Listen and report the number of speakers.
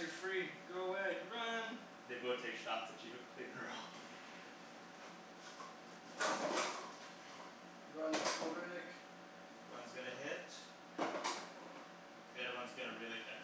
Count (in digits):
3